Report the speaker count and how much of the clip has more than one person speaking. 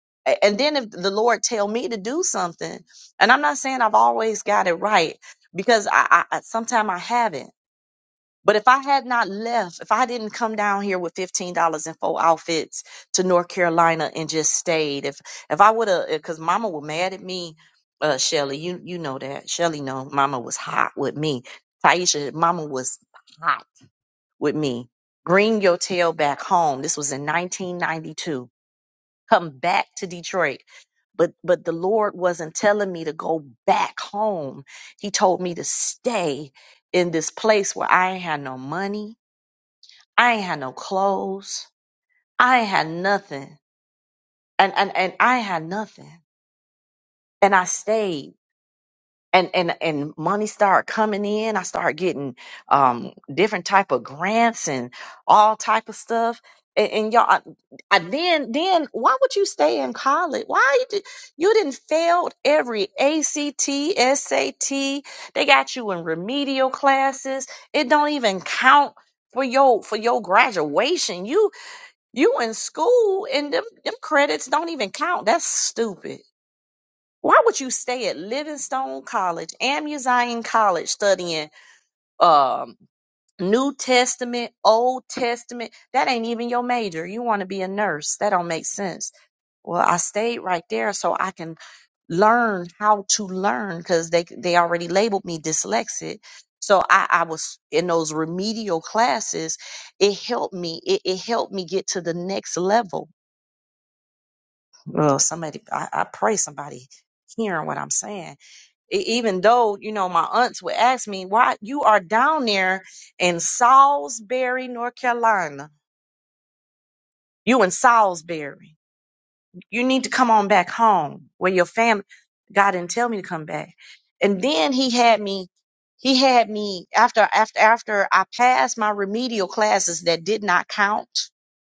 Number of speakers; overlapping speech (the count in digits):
1, no overlap